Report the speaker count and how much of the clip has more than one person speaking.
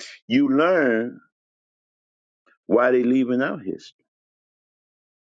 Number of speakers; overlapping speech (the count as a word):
one, no overlap